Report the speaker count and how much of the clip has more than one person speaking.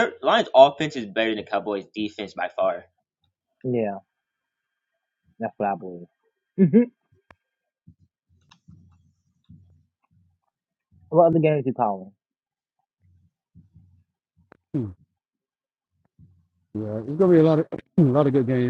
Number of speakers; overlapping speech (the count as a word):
three, no overlap